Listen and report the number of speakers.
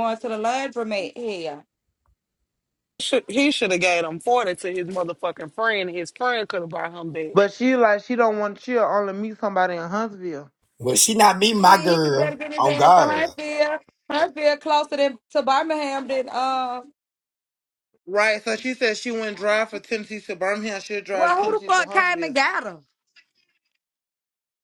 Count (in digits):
4